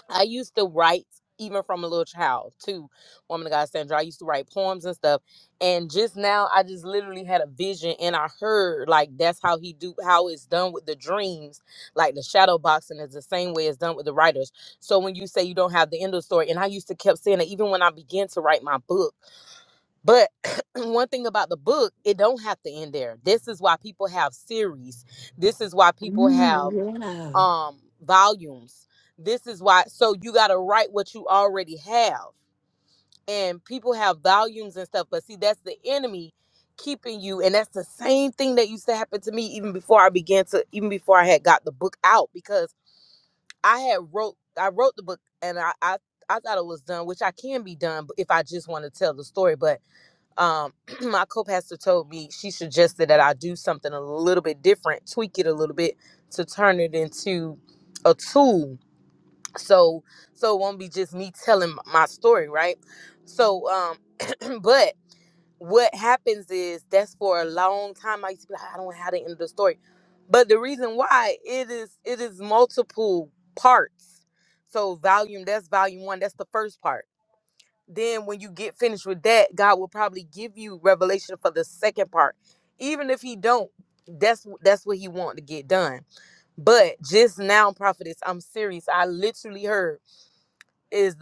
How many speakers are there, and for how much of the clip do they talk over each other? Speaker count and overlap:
2, about 1%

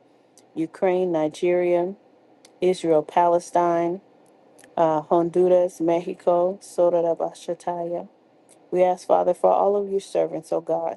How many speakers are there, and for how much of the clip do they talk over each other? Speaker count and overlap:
1, no overlap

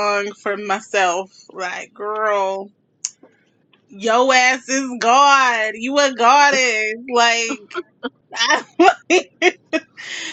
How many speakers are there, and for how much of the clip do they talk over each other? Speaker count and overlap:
1, no overlap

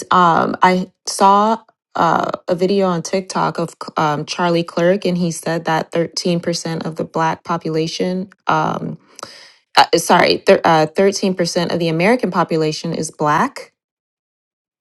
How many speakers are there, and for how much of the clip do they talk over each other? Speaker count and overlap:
1, no overlap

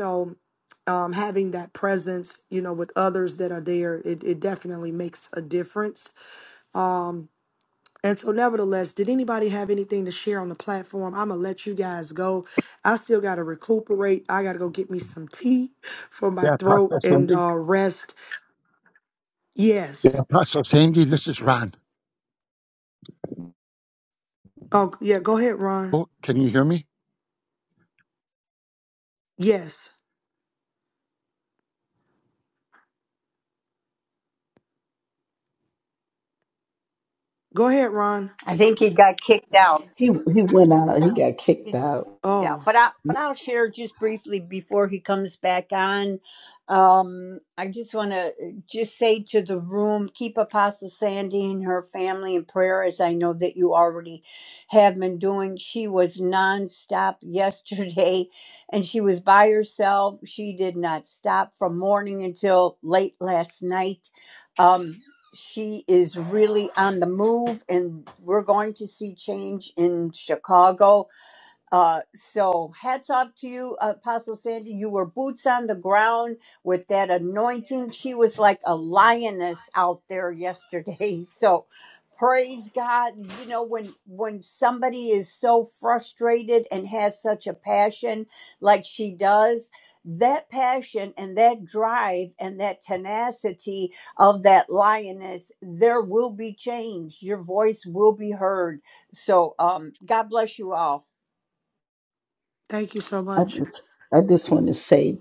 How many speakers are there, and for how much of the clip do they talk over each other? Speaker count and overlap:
4, about 2%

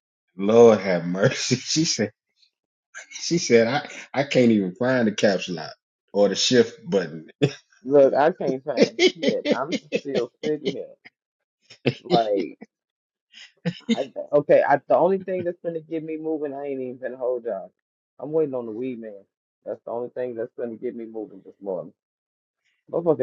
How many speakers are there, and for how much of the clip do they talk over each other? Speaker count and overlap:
2, no overlap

